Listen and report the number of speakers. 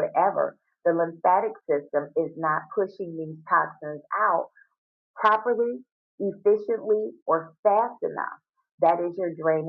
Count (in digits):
1